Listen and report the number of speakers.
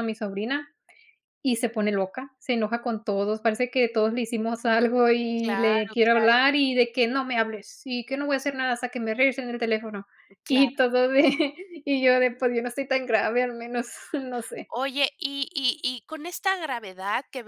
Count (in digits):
2